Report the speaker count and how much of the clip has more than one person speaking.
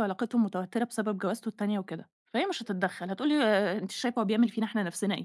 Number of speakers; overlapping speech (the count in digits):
1, no overlap